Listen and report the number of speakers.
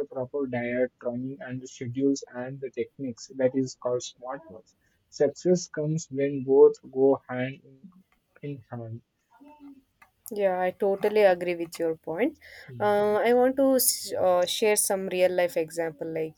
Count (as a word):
two